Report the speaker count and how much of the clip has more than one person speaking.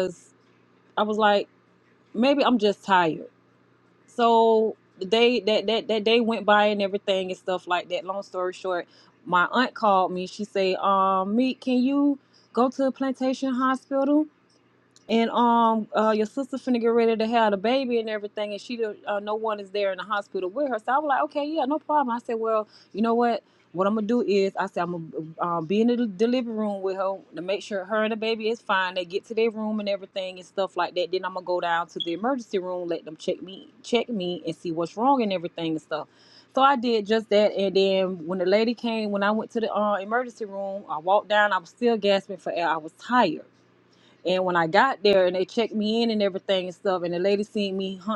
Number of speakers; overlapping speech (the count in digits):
1, no overlap